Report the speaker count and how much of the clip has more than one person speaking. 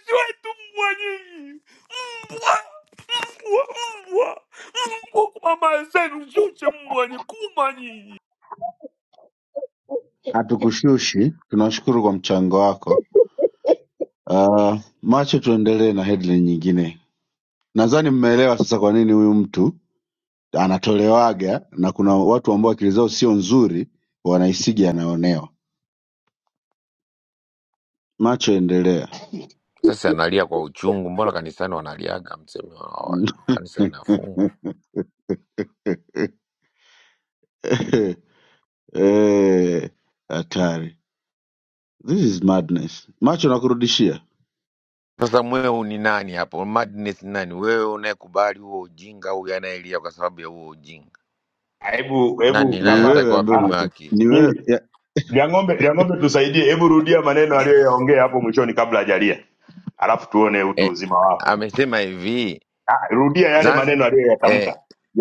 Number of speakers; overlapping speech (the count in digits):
4, about 4%